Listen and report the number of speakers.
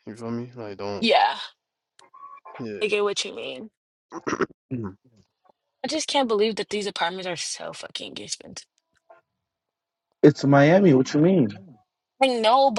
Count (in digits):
3